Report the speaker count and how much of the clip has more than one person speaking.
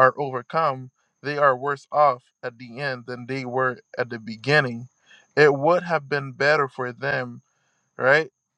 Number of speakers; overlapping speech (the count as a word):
one, no overlap